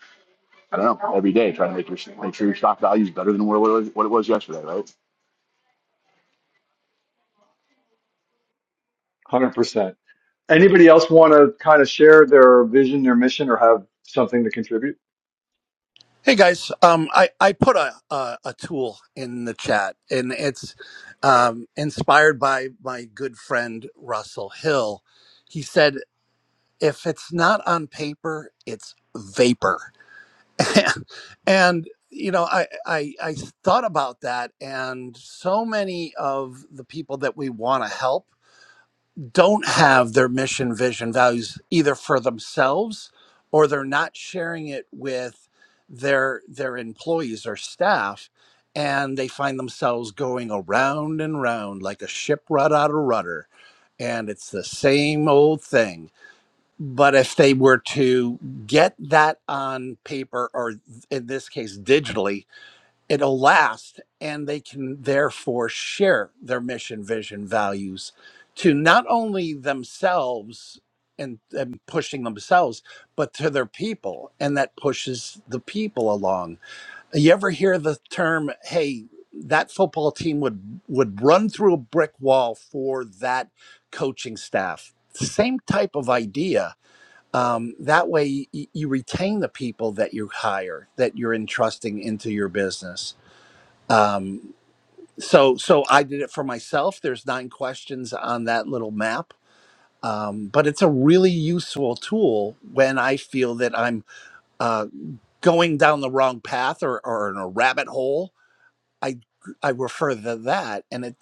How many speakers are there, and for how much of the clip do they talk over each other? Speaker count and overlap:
3, no overlap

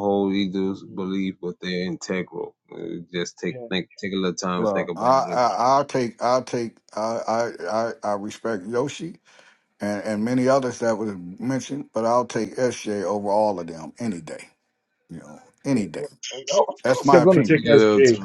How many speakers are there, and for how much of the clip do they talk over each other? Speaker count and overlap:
3, about 14%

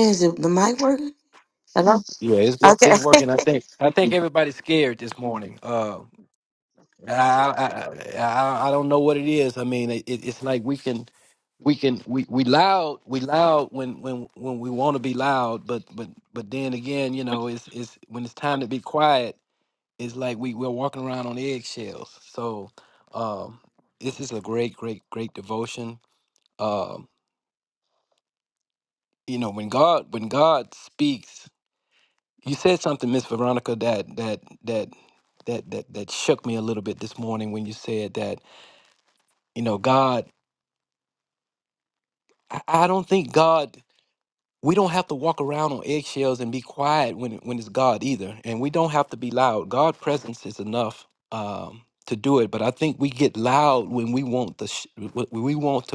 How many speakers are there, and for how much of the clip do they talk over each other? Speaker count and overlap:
2, about 1%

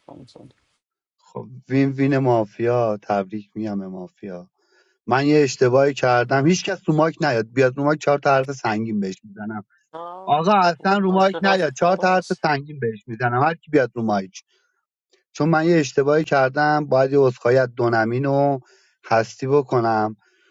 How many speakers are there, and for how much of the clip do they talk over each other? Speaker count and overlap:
2, about 7%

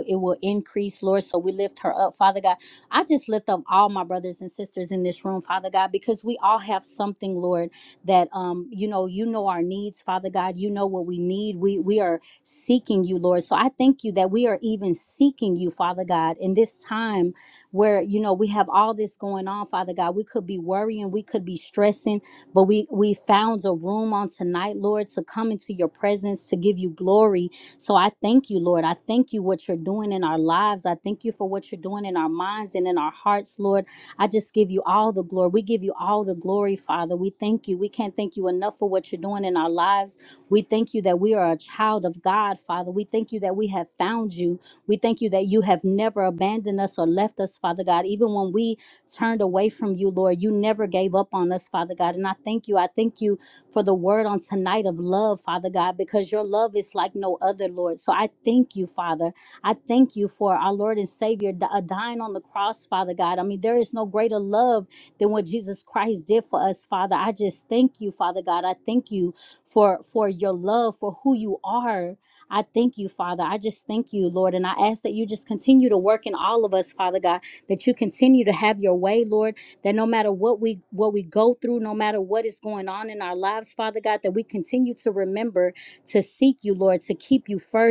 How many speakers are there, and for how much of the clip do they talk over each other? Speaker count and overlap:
1, no overlap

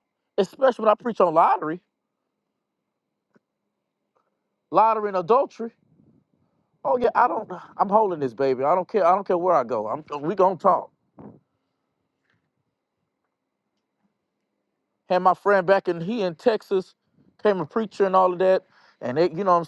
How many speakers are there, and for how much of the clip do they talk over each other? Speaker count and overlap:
1, no overlap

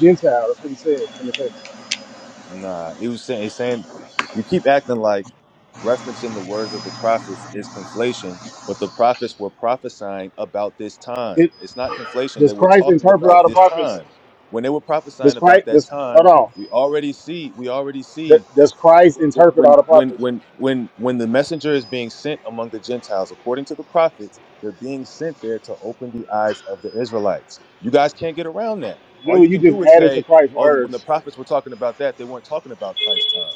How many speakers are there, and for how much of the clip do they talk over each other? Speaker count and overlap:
2, about 16%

